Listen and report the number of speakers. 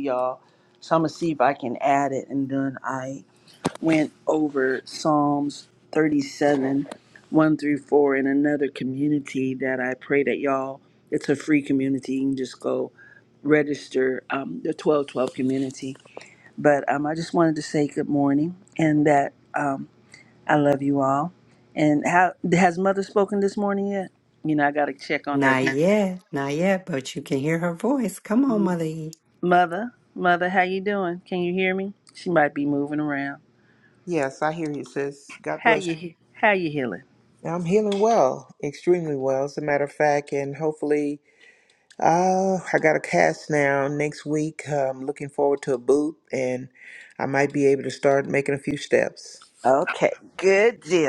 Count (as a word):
three